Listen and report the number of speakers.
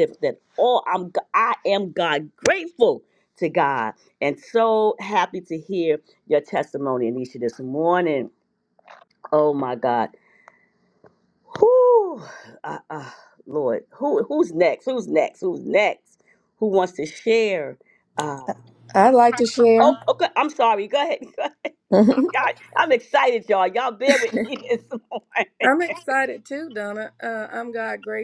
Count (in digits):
2